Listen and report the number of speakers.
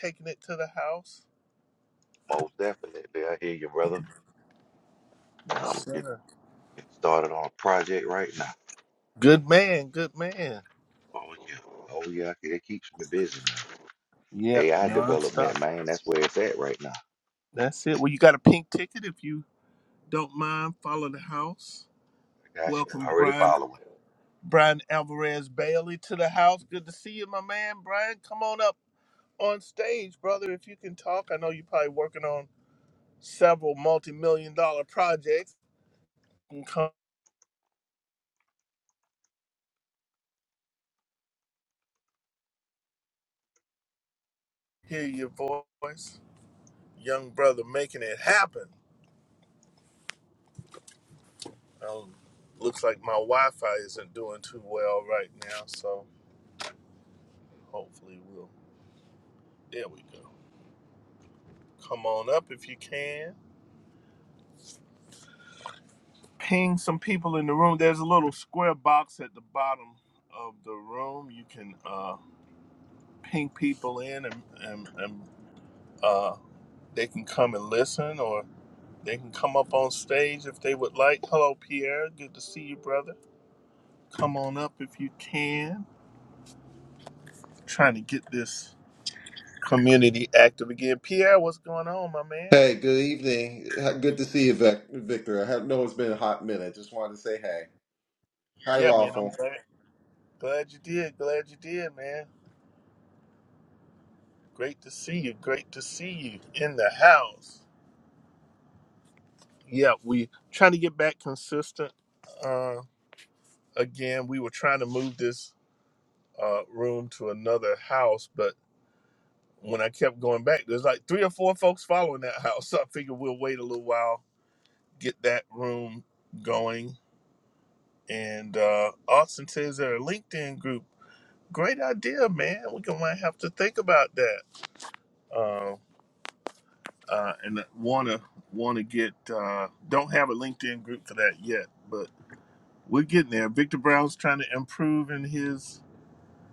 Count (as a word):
three